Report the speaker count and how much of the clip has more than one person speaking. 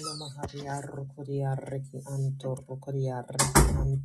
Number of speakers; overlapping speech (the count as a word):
one, no overlap